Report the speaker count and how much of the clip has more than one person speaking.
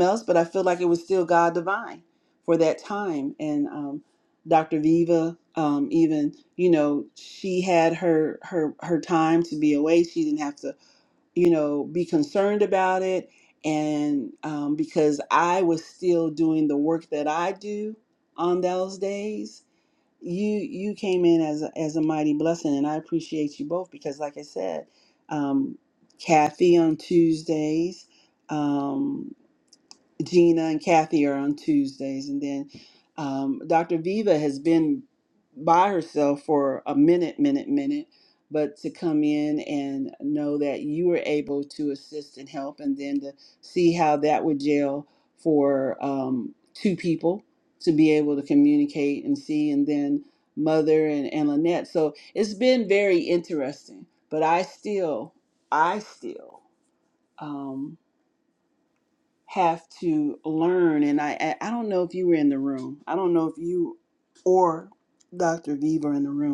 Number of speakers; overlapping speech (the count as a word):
one, no overlap